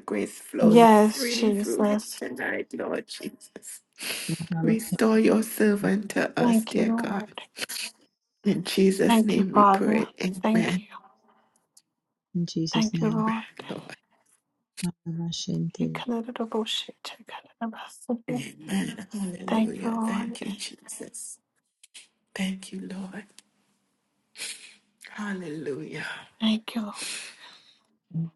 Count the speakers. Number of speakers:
three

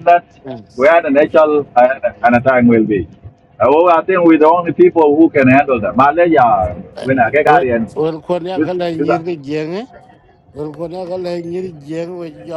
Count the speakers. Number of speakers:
two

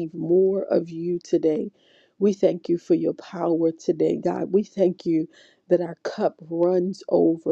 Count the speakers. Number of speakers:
one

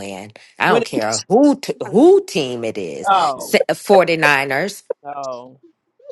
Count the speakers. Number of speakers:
two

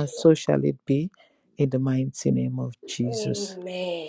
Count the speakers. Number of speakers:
two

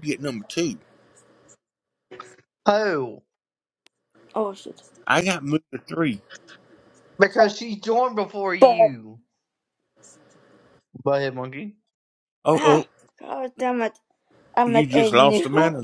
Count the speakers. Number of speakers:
three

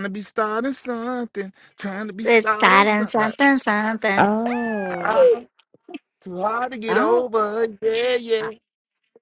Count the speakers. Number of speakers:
three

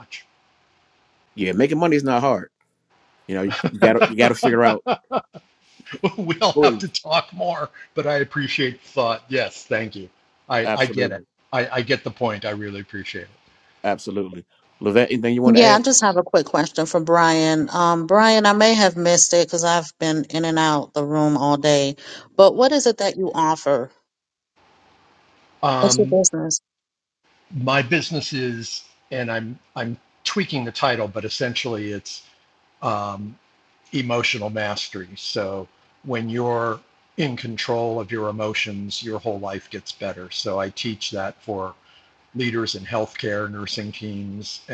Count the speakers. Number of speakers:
three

